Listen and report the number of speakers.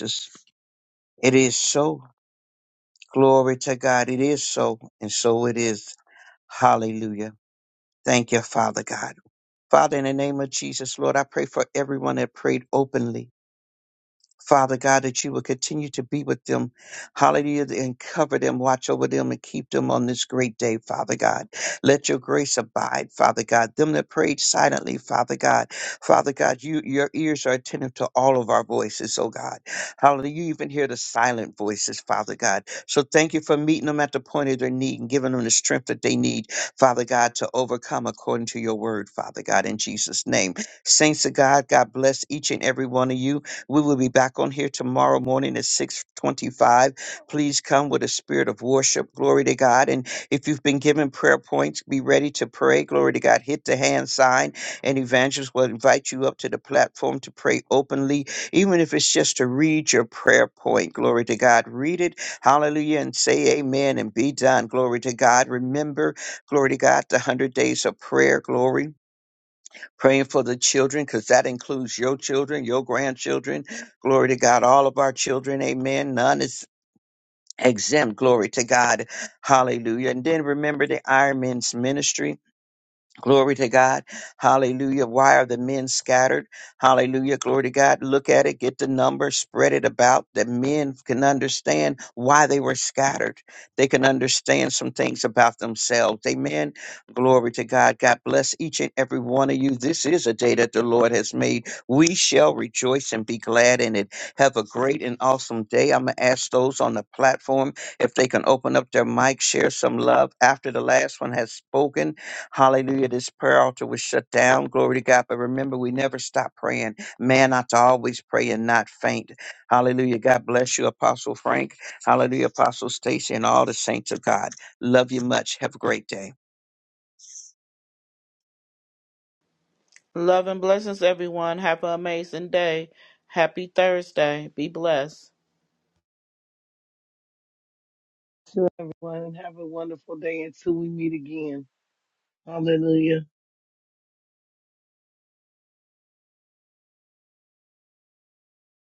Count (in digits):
3